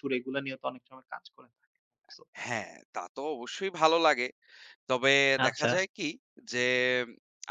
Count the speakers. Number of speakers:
two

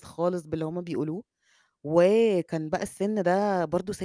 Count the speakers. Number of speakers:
one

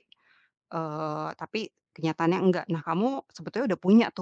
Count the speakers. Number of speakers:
one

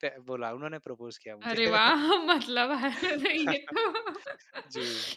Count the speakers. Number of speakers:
two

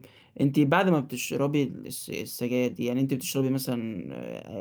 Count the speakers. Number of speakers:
one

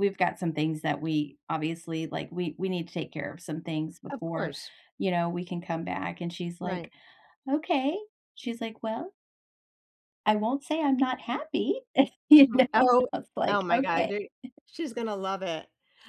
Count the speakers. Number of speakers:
two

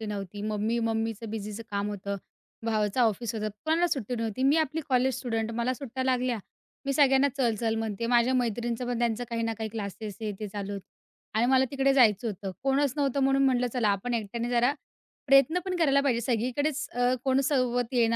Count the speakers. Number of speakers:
one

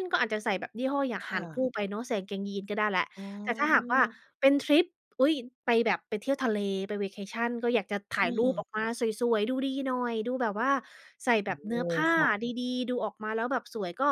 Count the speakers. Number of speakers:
two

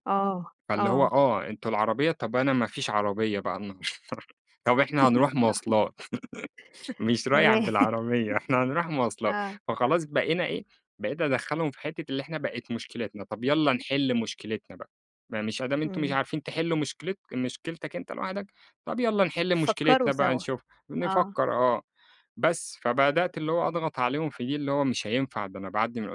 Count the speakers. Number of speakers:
two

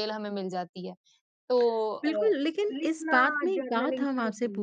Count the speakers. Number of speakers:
two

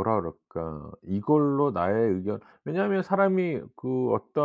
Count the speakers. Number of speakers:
one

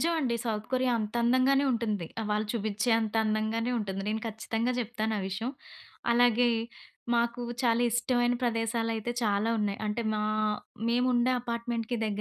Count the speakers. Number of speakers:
one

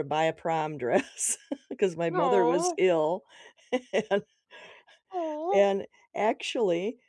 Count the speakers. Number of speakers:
two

